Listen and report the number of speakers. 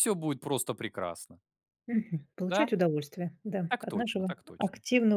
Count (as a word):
two